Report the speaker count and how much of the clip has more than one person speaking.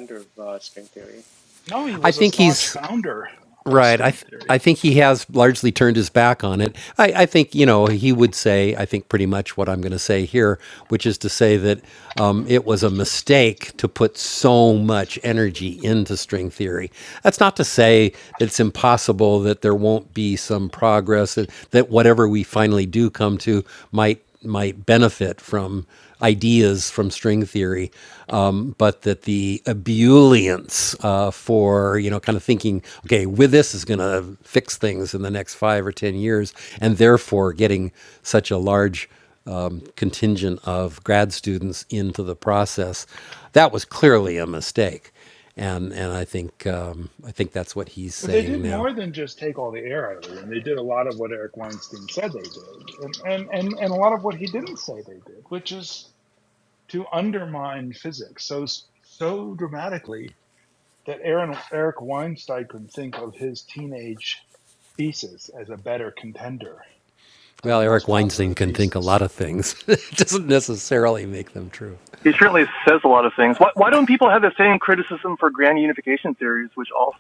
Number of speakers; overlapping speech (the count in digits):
4, about 5%